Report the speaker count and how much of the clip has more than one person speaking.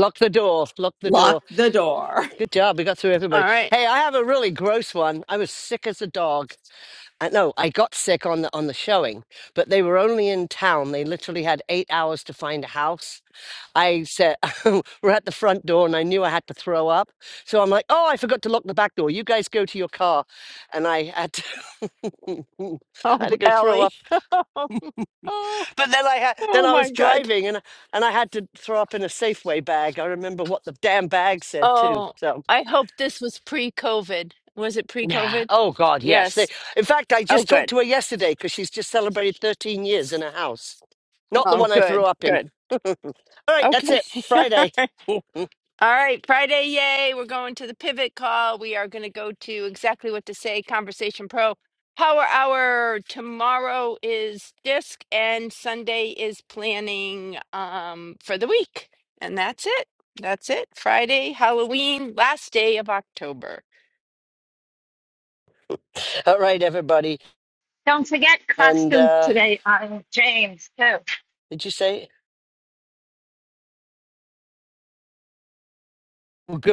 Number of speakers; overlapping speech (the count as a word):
four, about 8%